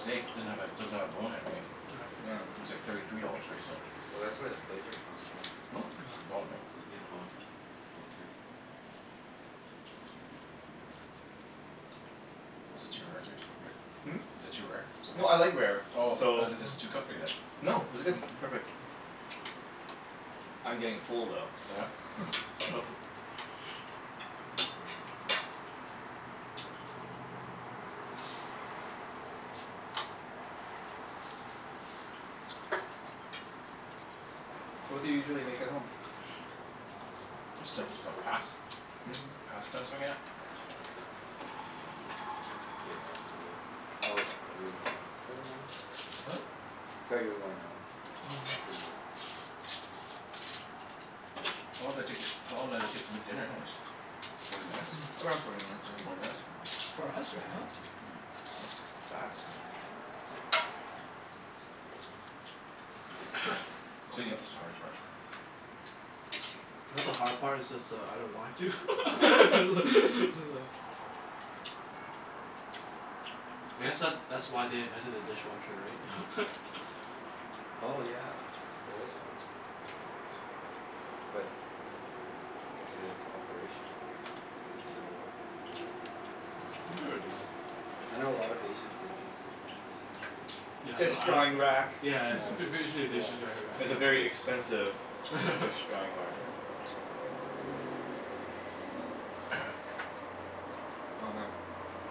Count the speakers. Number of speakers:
four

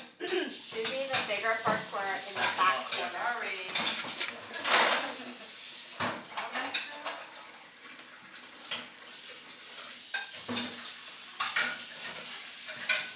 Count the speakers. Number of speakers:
three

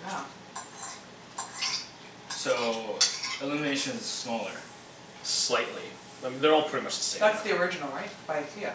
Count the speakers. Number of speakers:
three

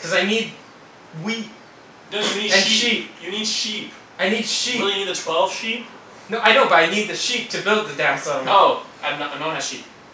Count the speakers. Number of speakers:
two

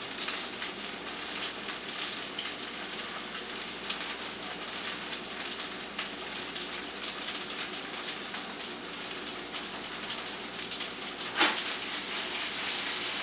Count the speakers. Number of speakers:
zero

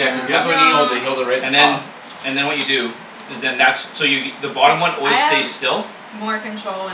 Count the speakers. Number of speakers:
three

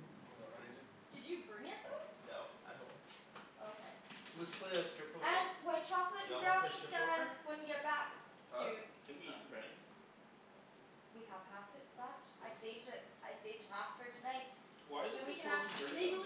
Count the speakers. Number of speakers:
four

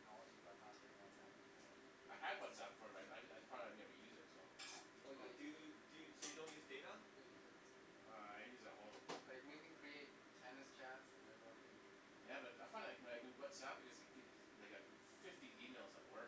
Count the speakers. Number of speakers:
three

